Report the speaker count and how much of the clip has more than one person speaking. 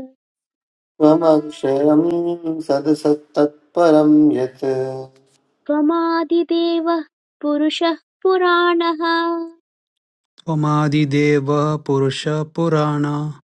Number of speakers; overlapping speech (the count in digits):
3, no overlap